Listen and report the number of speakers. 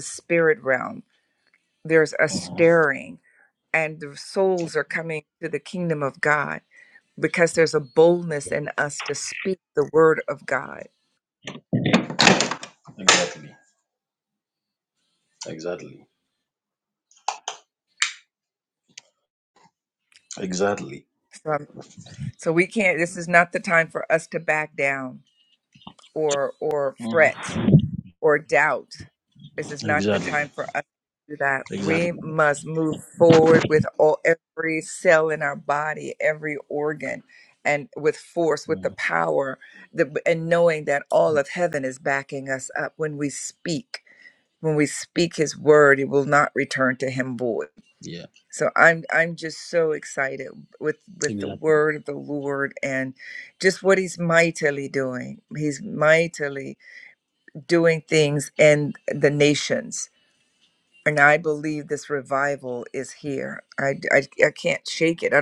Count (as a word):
two